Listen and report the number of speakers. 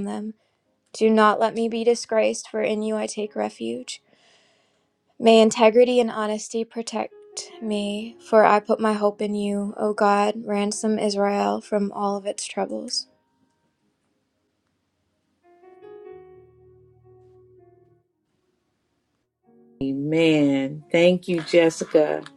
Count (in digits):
2